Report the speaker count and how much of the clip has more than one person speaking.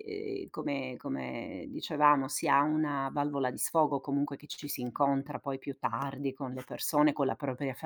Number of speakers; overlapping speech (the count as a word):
one, no overlap